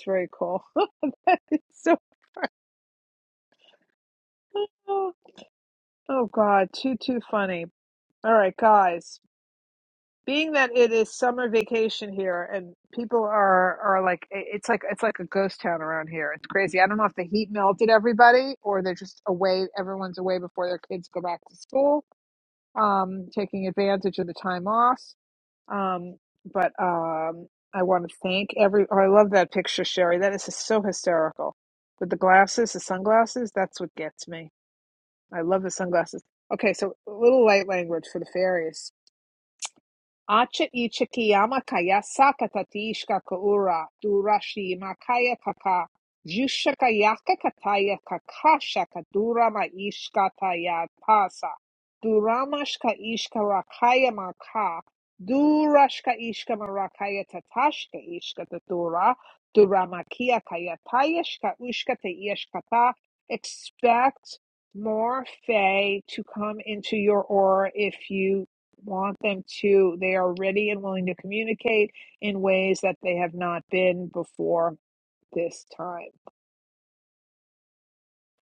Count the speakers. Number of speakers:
1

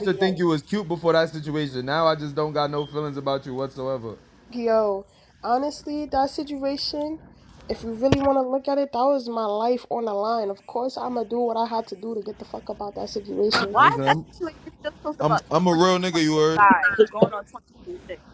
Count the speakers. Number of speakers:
3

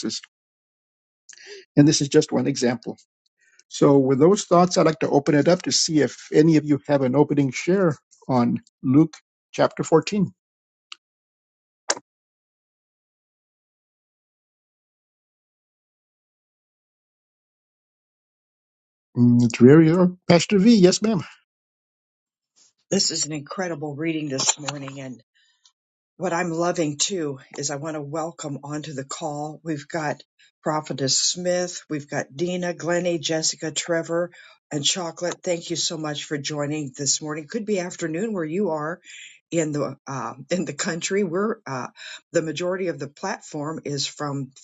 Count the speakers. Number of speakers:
2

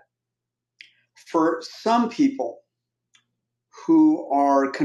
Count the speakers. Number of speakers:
1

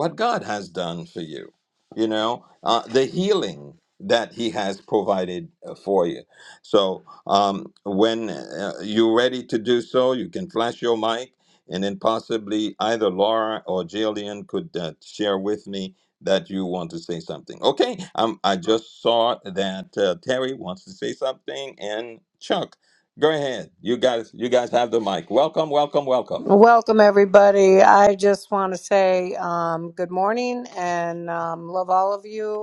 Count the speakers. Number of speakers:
2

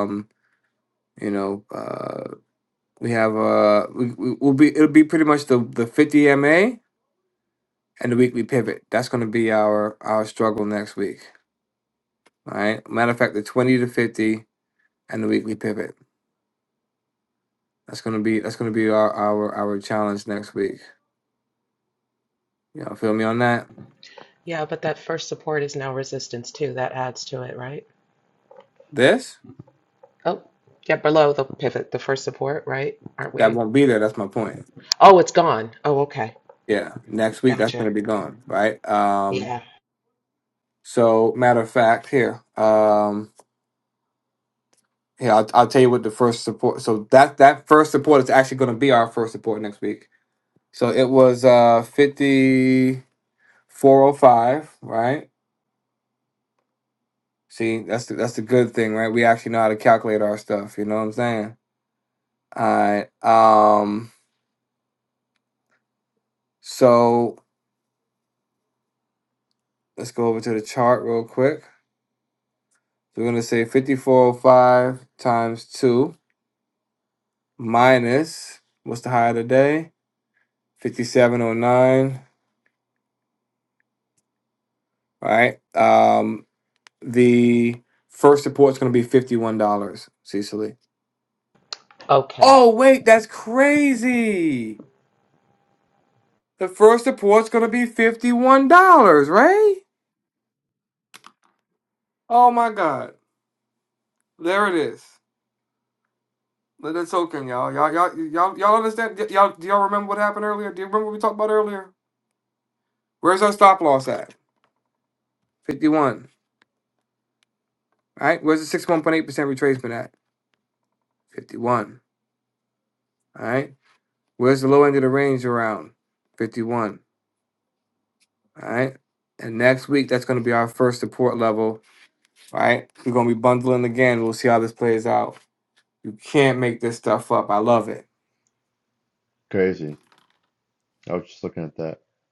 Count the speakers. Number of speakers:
3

